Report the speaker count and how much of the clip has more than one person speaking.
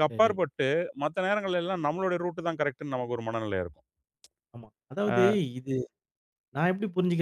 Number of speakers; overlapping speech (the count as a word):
two, about 6%